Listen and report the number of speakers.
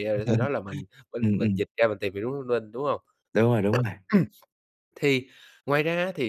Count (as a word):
two